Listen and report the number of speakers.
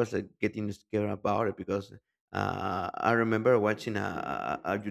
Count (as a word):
one